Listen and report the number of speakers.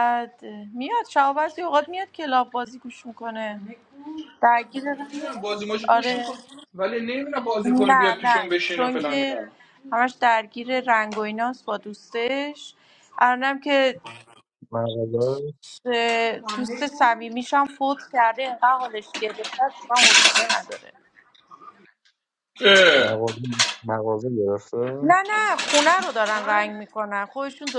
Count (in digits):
3